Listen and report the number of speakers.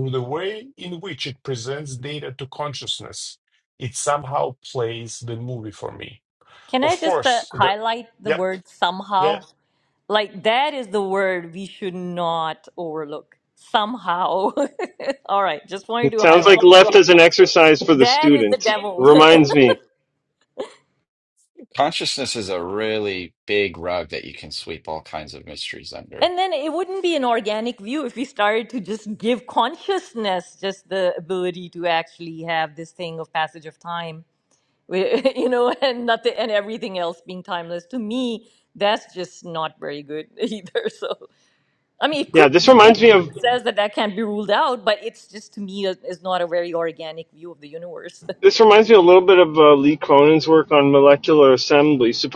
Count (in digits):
4